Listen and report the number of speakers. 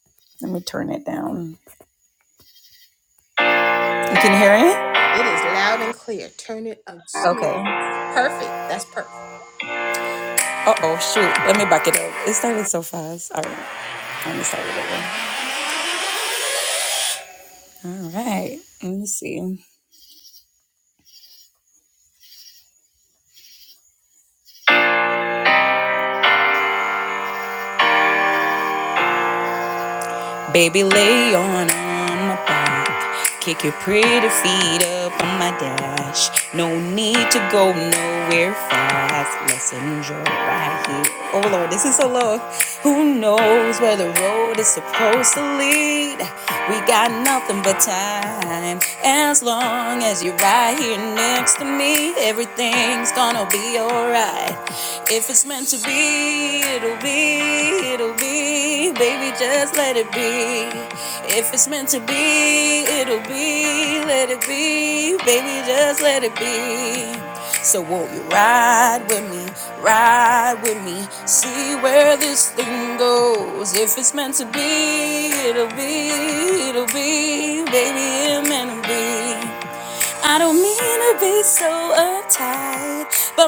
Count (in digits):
2